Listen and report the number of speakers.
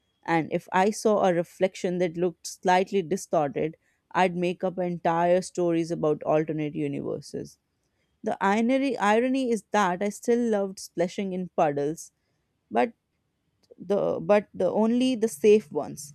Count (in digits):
1